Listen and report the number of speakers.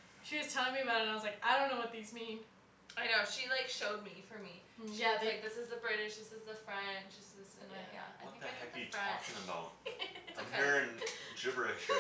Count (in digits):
3